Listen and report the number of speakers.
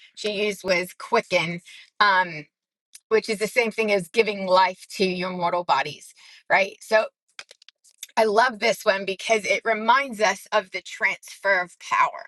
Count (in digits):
1